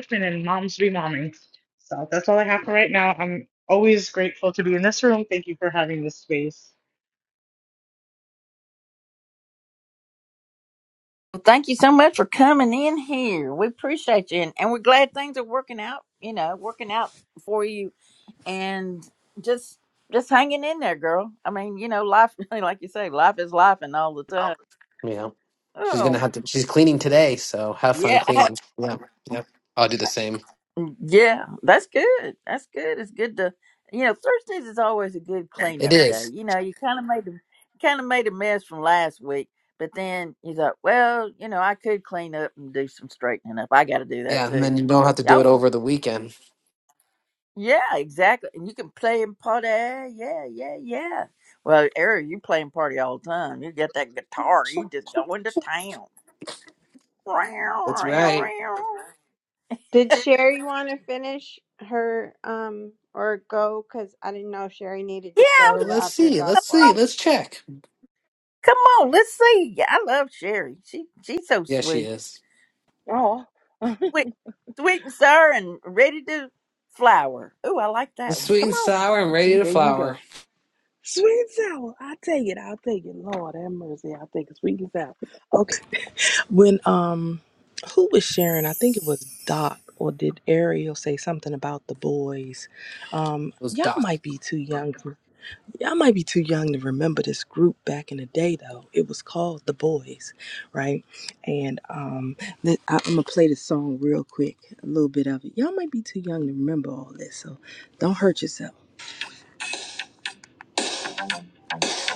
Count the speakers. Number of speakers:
five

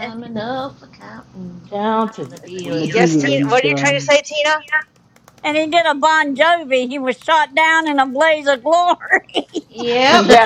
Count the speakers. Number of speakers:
four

